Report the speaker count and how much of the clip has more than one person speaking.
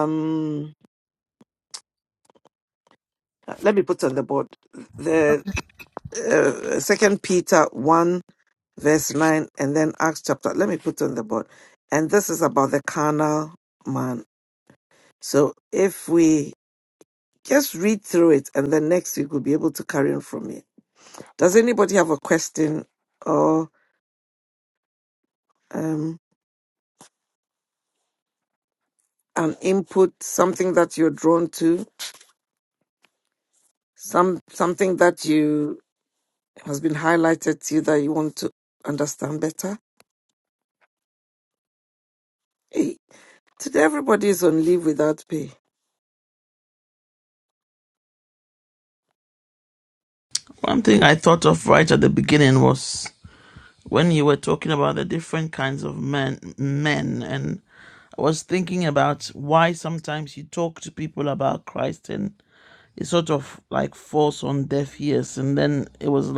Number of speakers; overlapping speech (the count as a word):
two, no overlap